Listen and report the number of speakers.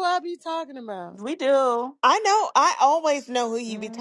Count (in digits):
3